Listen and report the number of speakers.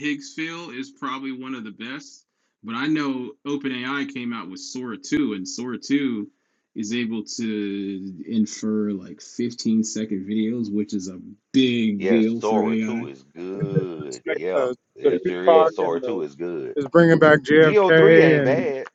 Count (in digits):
3